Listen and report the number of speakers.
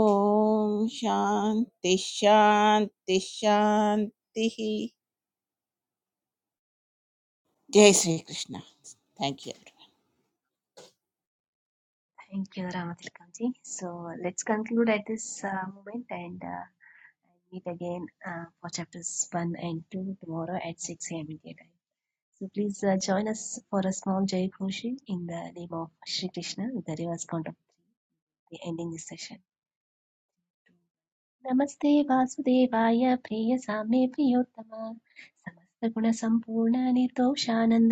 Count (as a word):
two